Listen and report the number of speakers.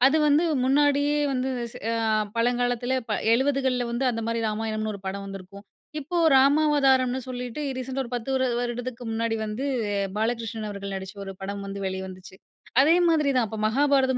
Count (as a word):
one